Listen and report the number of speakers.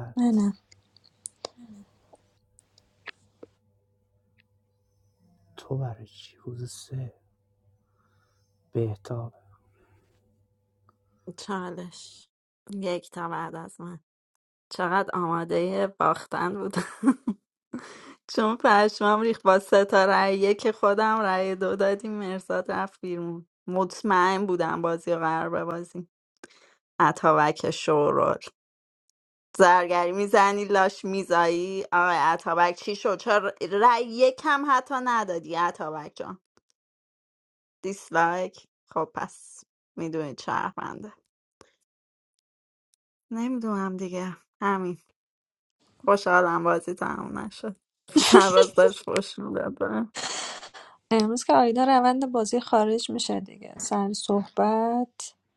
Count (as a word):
three